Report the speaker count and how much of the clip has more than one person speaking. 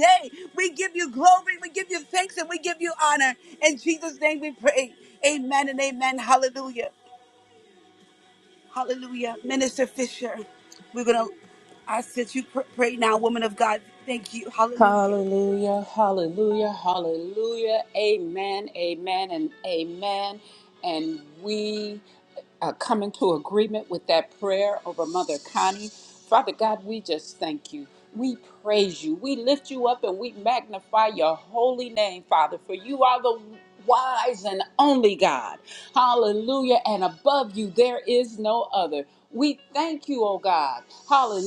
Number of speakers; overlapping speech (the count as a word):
two, about 1%